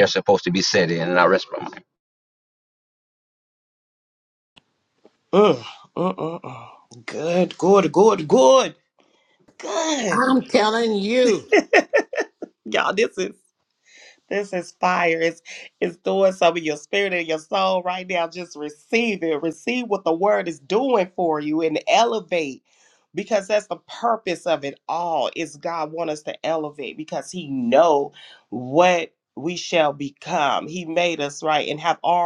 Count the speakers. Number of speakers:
3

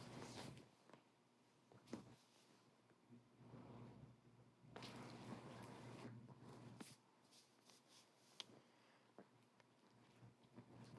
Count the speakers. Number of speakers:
0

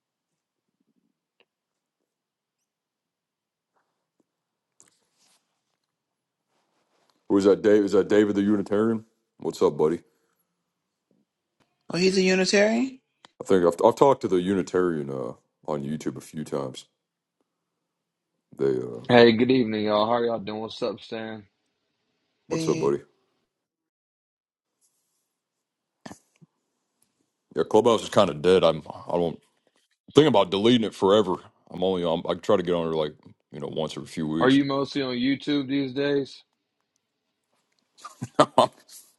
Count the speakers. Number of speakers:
3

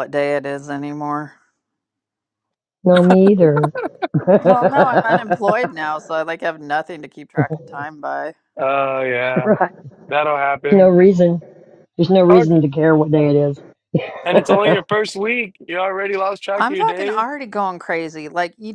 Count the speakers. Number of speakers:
3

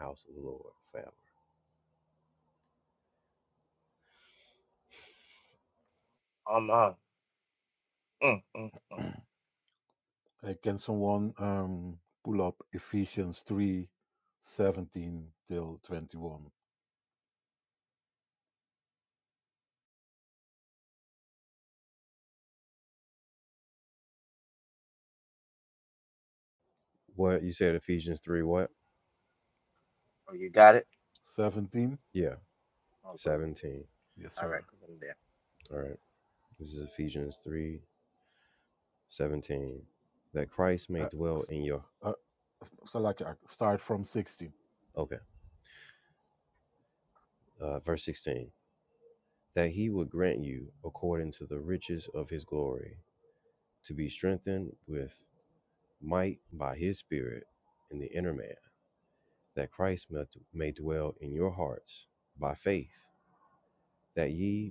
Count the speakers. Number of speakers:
3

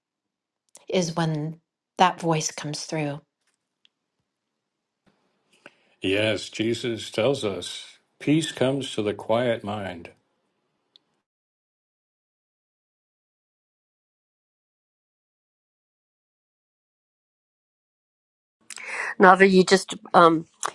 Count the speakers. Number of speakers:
3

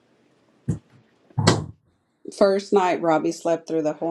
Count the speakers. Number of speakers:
1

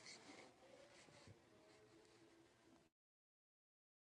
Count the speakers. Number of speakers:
0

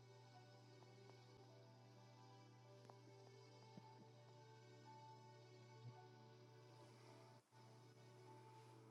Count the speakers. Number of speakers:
0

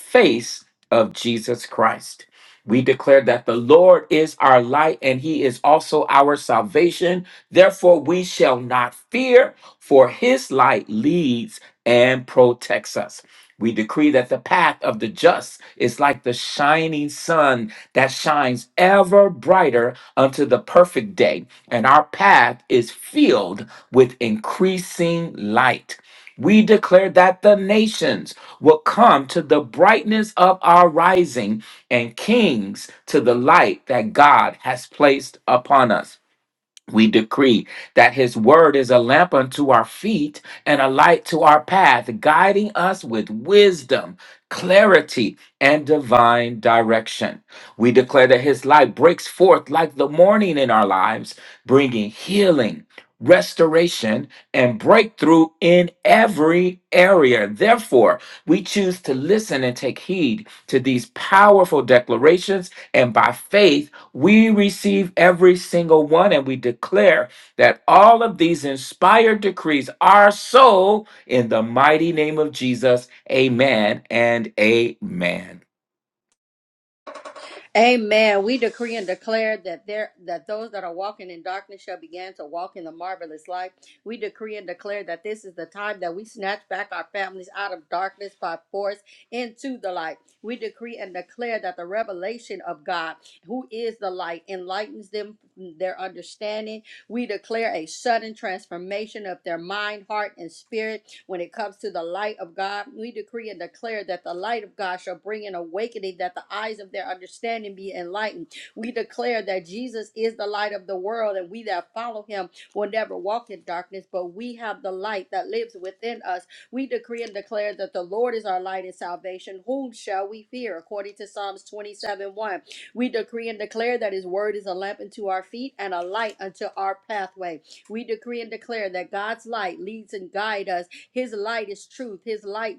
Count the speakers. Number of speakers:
2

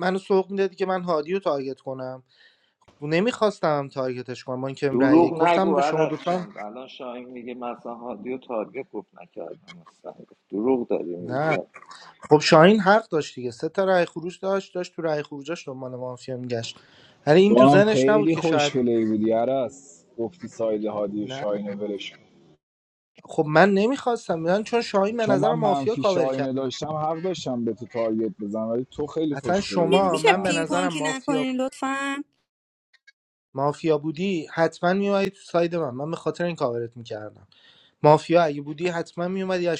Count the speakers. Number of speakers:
4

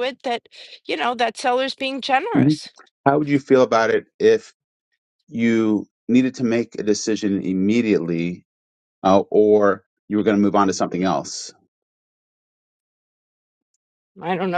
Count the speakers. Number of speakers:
2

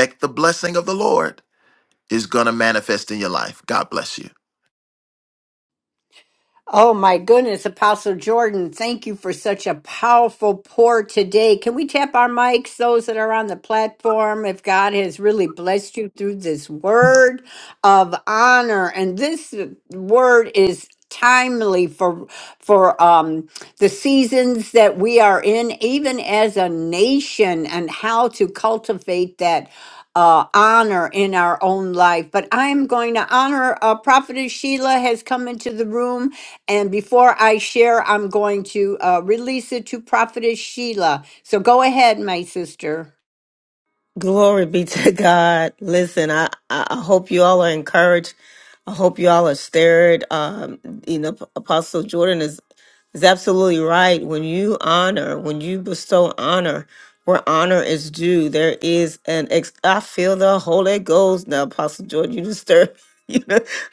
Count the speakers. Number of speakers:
3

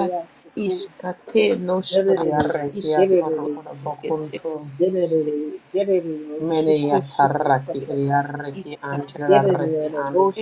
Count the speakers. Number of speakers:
3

